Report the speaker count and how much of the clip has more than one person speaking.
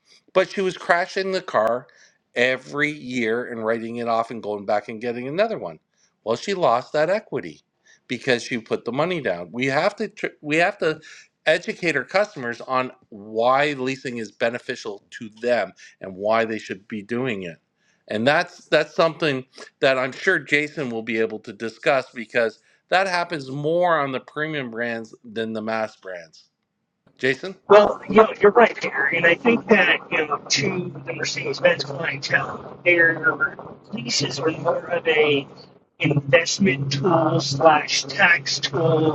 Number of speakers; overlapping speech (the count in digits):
2, no overlap